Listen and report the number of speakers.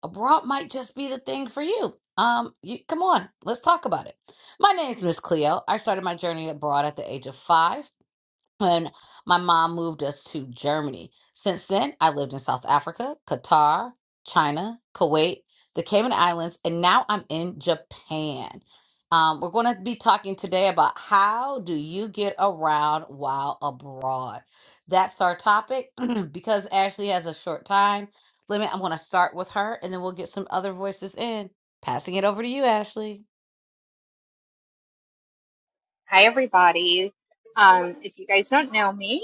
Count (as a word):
two